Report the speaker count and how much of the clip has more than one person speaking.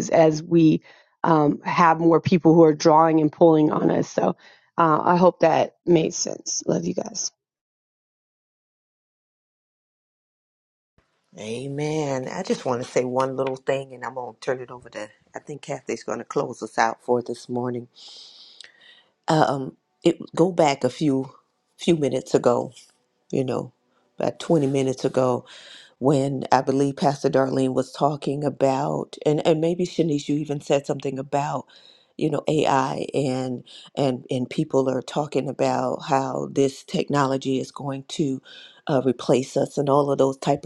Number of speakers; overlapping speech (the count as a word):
two, no overlap